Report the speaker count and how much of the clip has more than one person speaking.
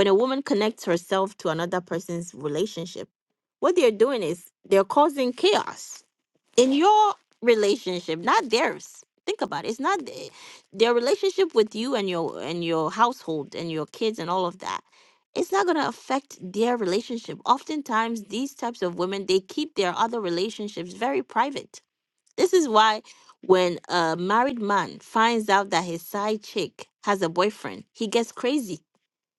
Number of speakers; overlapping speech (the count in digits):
1, no overlap